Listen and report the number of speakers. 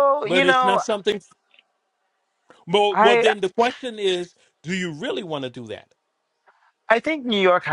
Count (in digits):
2